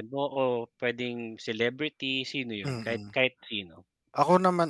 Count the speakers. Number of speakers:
two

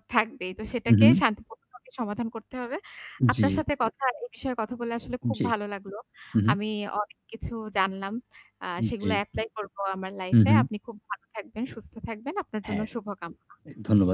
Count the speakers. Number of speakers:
two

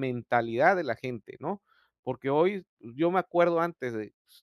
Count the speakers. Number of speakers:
one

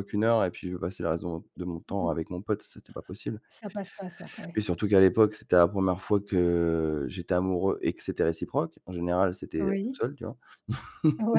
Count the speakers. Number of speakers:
two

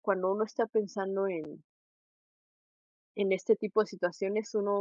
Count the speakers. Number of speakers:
one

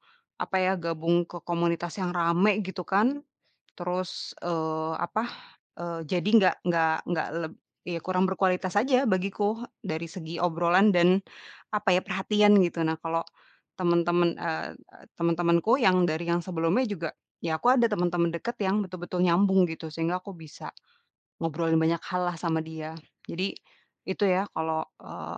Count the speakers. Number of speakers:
one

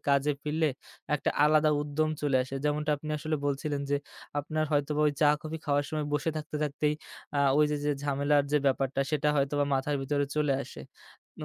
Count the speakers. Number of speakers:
one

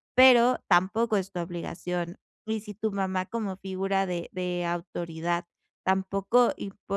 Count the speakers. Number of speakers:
one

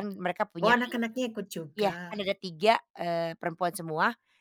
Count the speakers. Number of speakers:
two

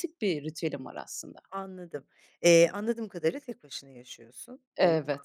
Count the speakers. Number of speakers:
two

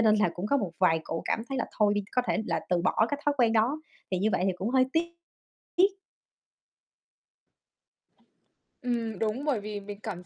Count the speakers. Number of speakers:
two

